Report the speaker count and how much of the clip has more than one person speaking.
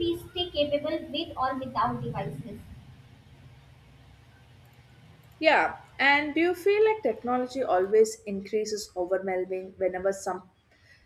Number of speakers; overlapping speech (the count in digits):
2, no overlap